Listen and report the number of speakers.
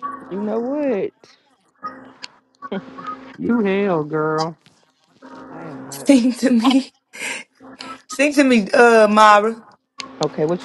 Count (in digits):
3